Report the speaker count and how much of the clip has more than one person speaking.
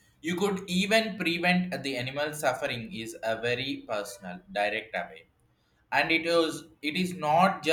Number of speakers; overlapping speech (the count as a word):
one, no overlap